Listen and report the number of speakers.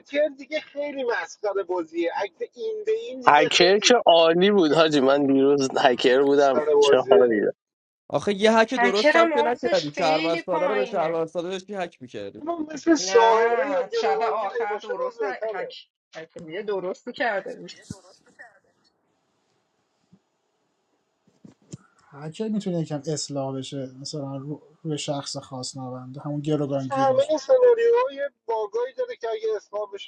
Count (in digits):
5